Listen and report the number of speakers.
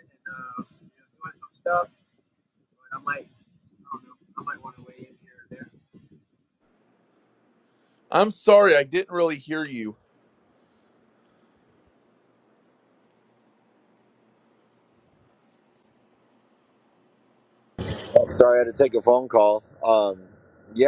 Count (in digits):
3